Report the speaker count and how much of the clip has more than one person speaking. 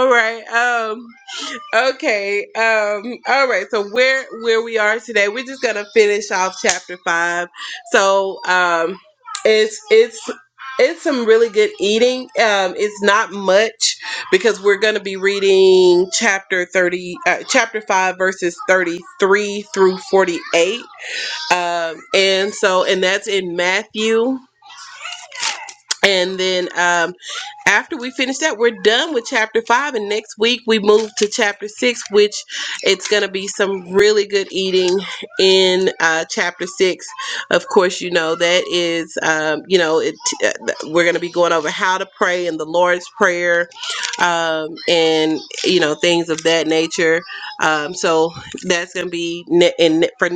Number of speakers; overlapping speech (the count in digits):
1, no overlap